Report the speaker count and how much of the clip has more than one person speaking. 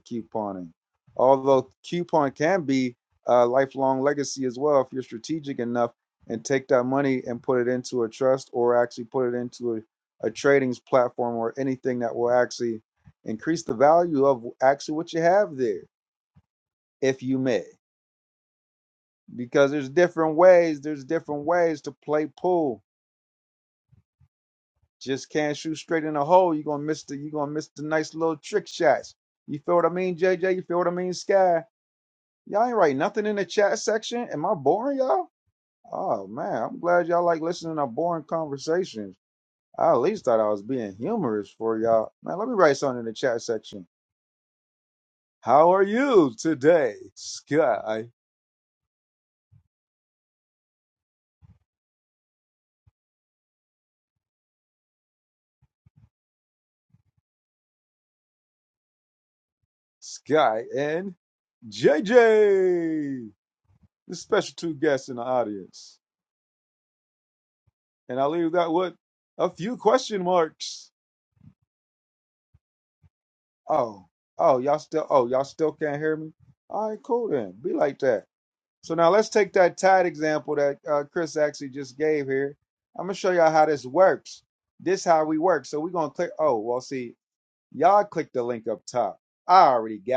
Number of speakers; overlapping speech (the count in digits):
1, no overlap